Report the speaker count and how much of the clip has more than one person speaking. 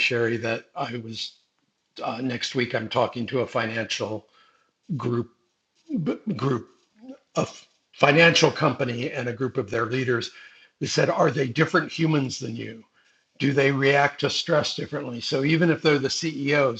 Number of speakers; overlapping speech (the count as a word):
one, no overlap